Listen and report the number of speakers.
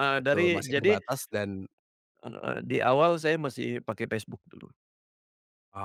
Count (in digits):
2